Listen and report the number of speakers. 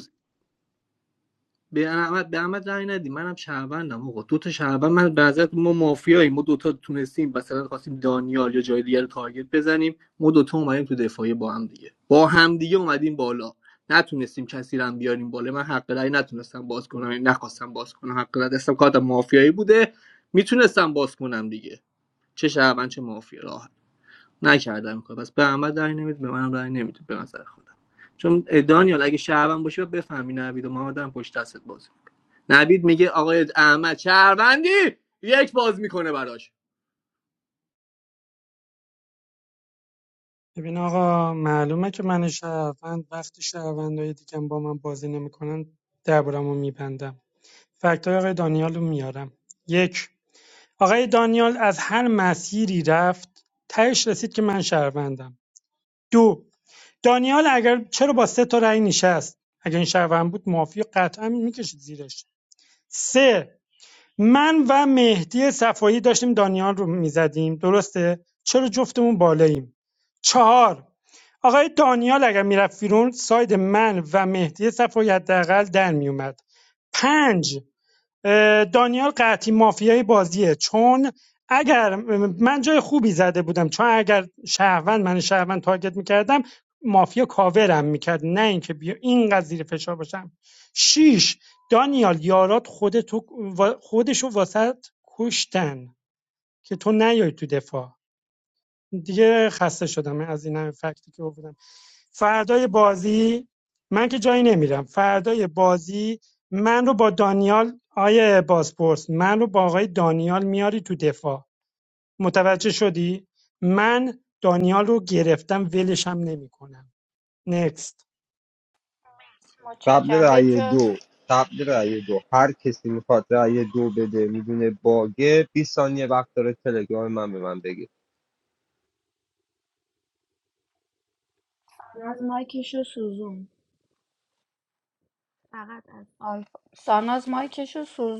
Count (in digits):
4